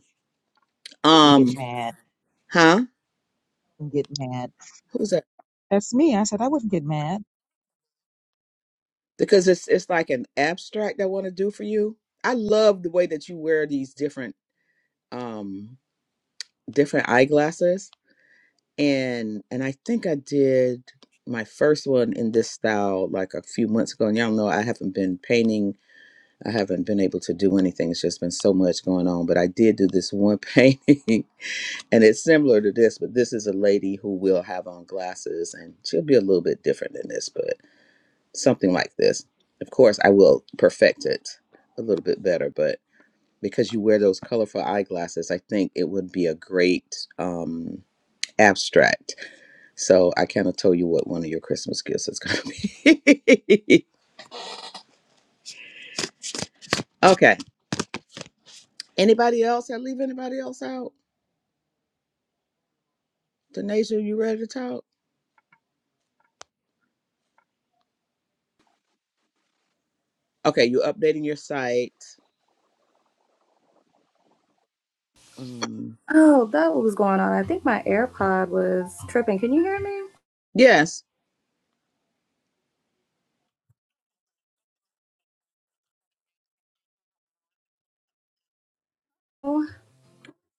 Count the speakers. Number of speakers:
3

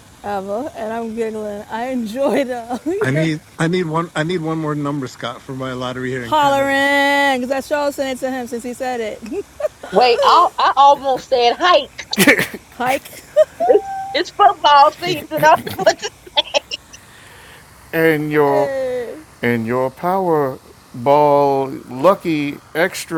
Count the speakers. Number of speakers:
4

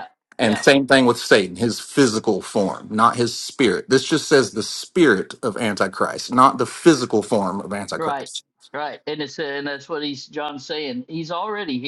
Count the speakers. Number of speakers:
2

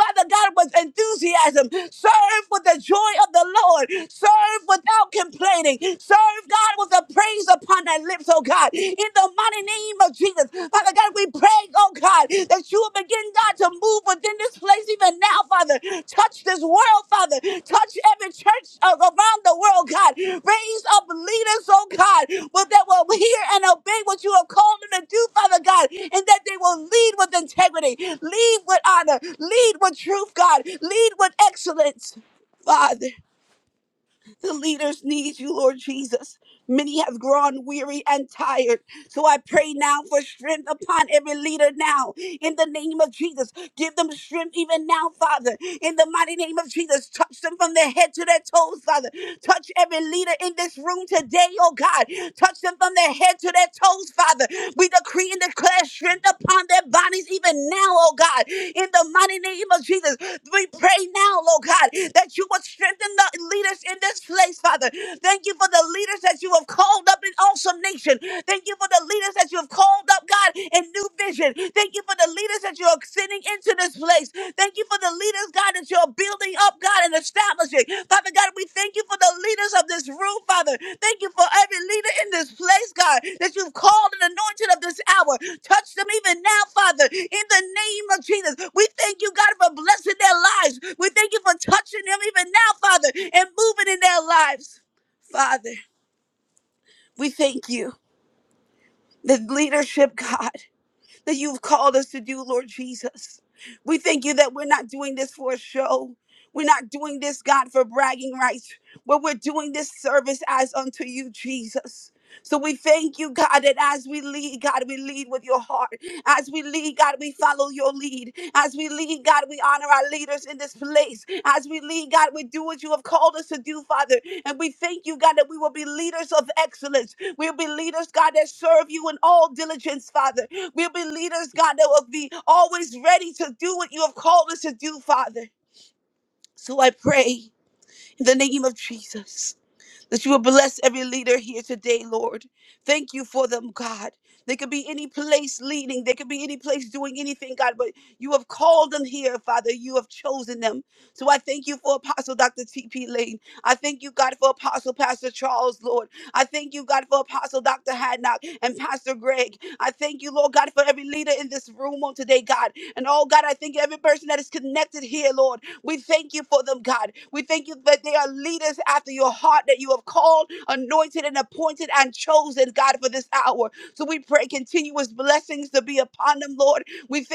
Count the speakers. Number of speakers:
1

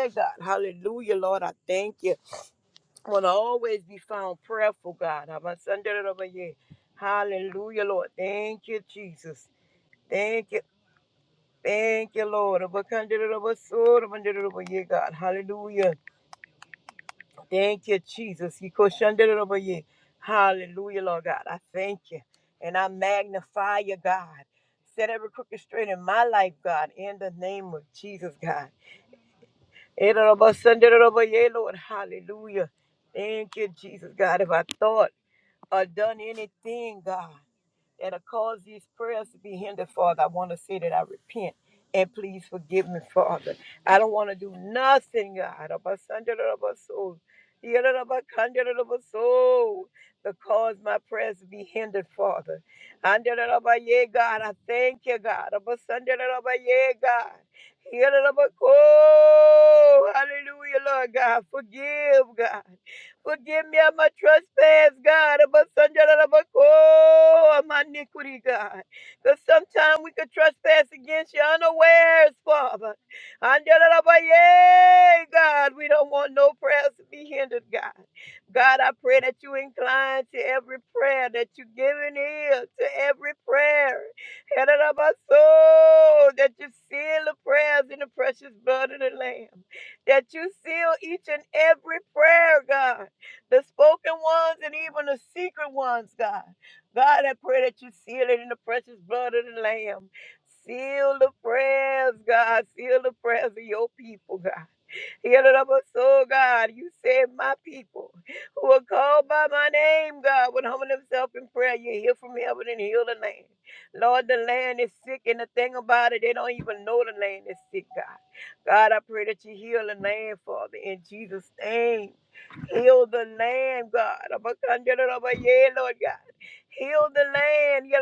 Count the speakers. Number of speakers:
1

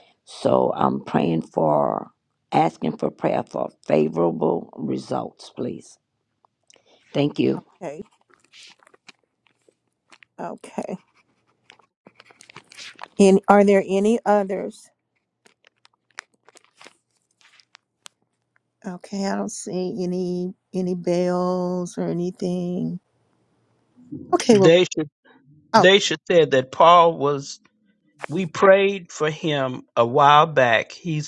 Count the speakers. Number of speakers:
3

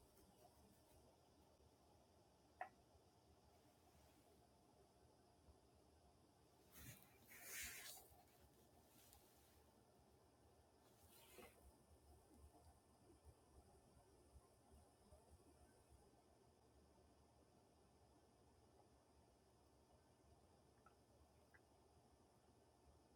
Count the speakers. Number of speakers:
0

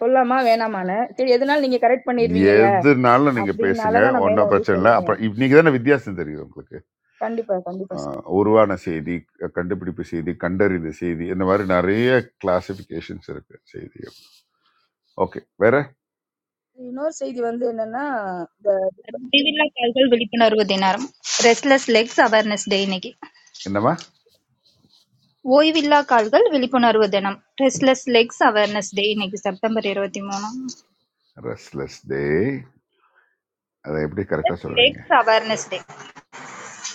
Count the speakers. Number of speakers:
3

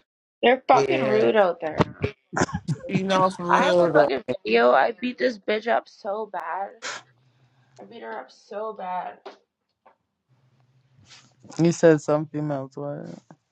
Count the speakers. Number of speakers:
3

